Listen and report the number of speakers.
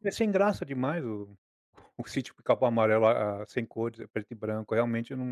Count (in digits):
1